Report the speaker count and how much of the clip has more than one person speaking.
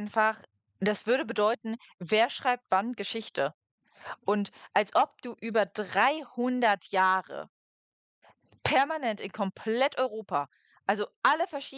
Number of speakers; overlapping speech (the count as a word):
one, no overlap